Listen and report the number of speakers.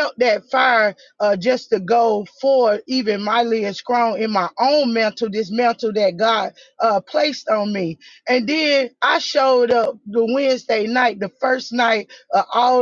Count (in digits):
1